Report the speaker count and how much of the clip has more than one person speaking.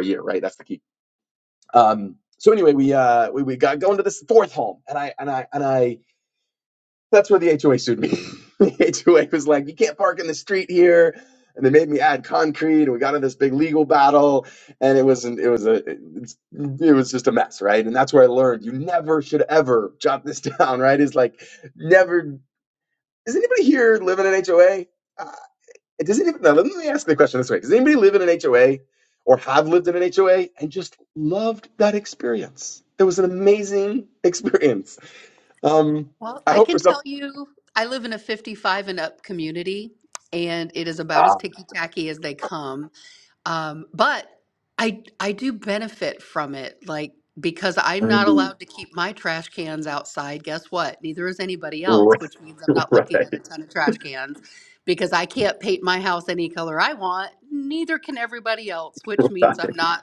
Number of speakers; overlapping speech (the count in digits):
2, about 1%